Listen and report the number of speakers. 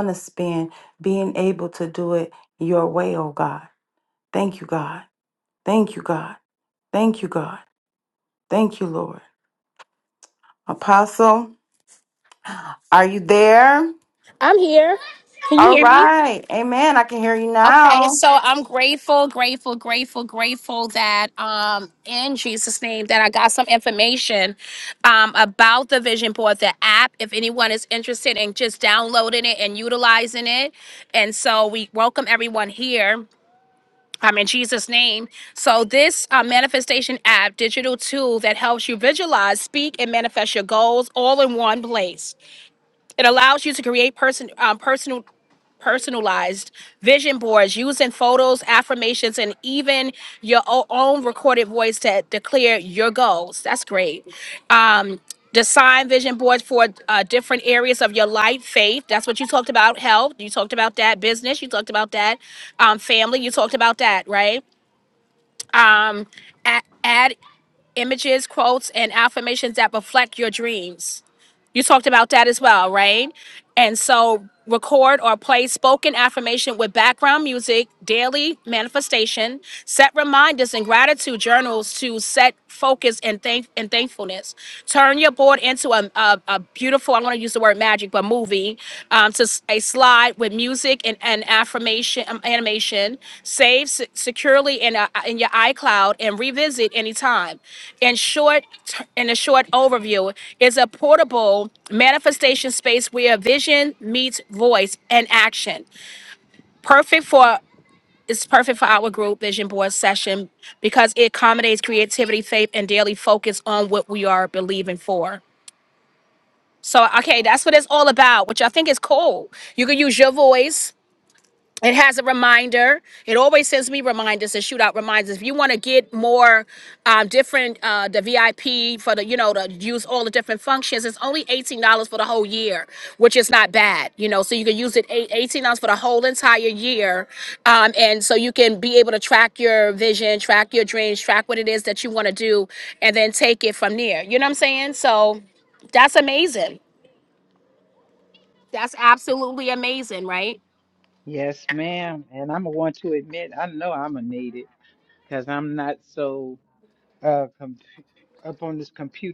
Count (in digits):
3